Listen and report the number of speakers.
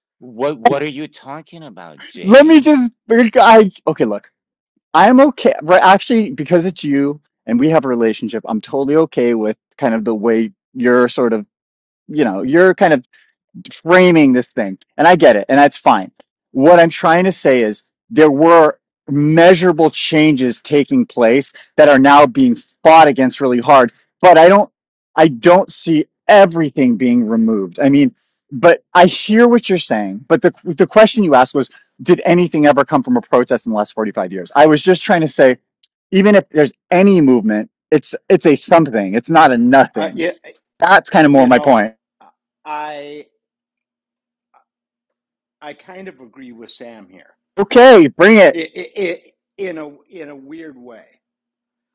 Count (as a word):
three